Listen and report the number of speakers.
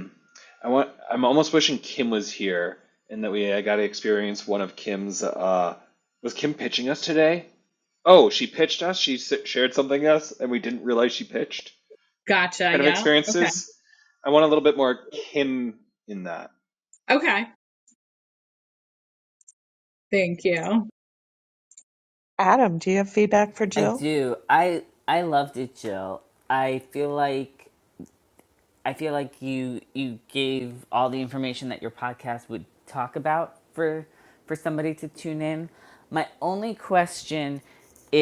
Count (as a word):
four